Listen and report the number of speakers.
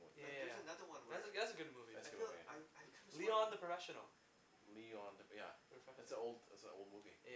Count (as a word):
three